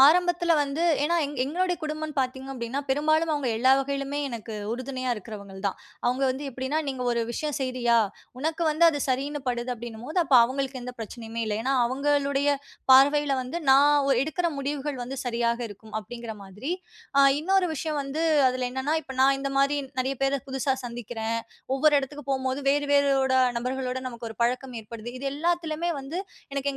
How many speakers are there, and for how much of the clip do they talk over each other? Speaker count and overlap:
1, no overlap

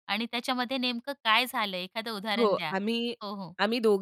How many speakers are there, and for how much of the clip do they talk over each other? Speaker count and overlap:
2, about 10%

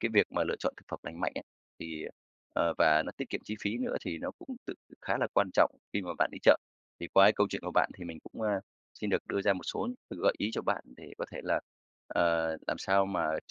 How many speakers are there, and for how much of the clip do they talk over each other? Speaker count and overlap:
1, no overlap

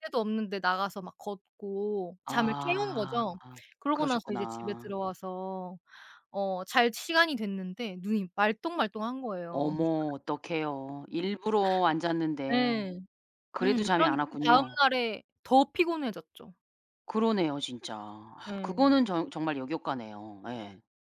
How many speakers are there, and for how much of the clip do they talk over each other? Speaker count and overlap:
2, about 19%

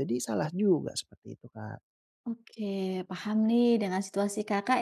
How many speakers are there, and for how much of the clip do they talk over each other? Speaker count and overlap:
2, no overlap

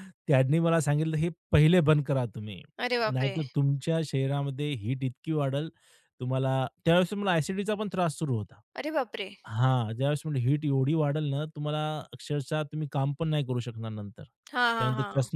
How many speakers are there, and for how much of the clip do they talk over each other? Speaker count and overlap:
2, about 5%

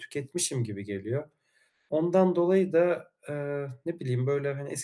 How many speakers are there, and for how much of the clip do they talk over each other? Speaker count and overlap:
1, no overlap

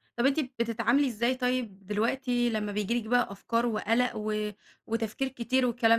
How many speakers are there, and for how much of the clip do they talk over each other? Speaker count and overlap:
1, no overlap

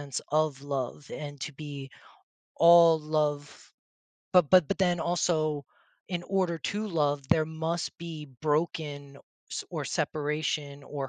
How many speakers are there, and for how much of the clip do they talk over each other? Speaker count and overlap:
1, no overlap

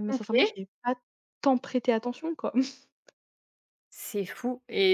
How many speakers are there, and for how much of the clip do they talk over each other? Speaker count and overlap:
2, about 10%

